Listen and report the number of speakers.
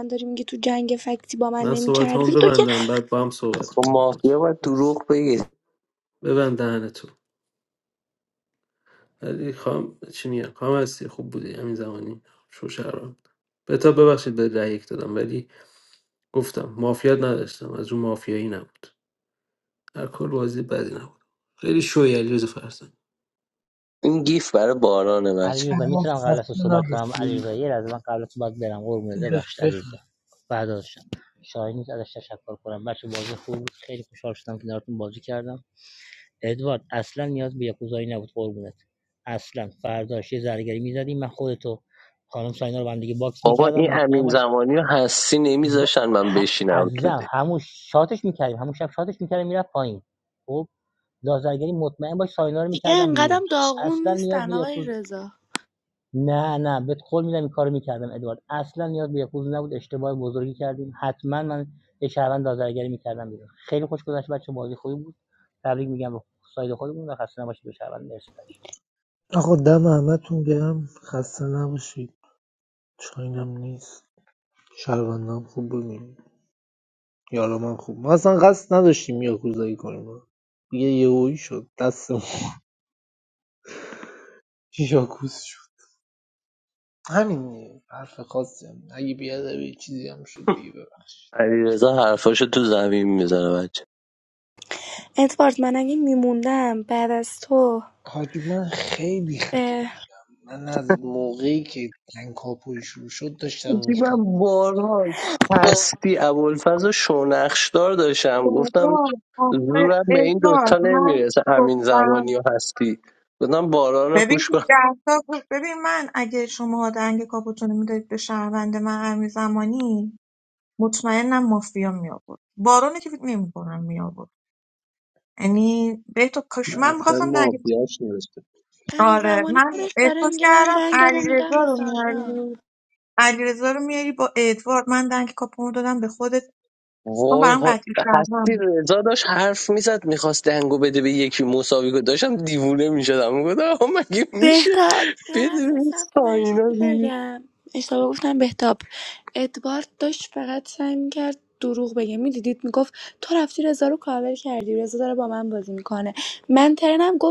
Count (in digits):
7